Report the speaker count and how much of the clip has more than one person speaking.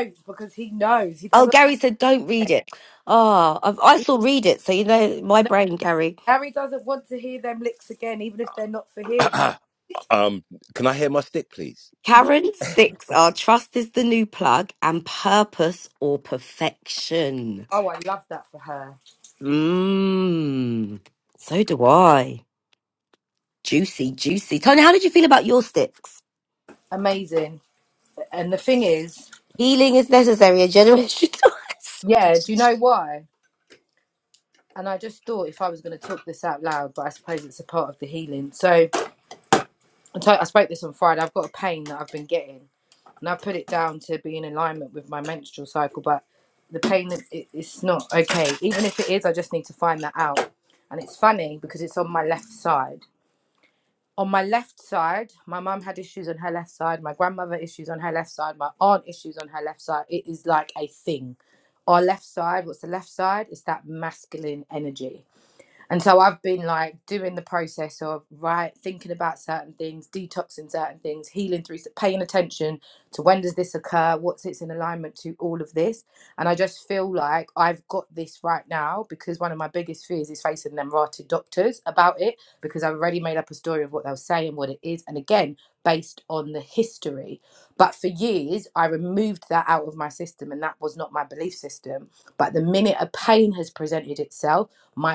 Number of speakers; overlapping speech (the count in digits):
3, under 1%